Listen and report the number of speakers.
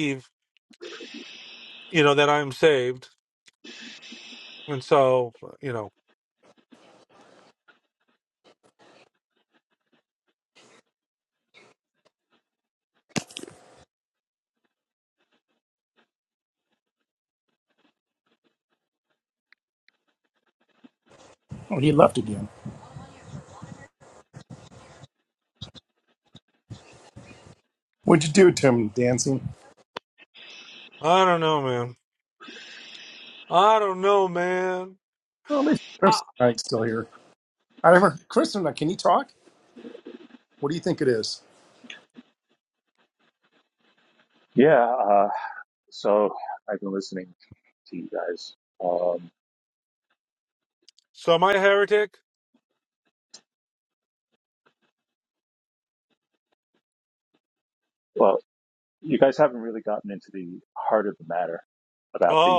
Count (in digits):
3